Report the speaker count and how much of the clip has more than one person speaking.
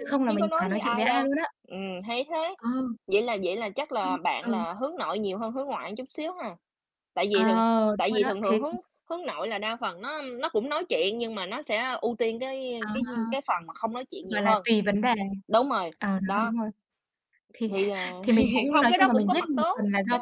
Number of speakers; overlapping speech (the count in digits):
2, about 30%